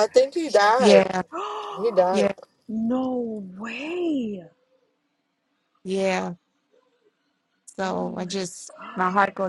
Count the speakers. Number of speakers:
three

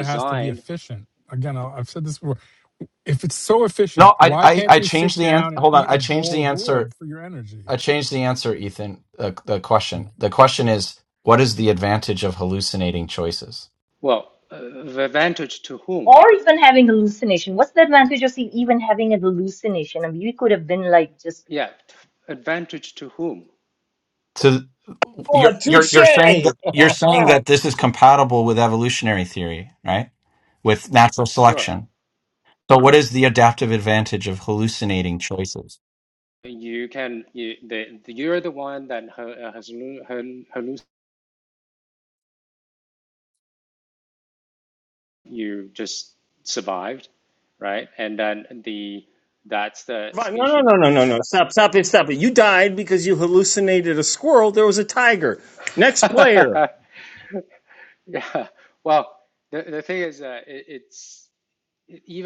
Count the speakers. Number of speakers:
five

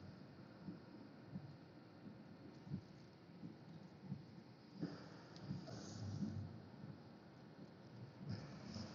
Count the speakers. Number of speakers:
zero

